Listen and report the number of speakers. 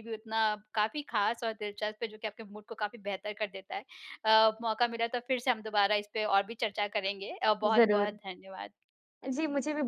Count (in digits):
2